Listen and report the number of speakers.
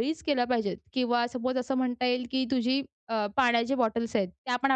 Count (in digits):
1